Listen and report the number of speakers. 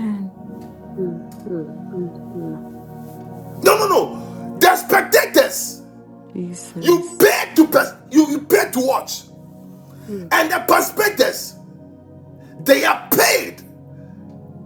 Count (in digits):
3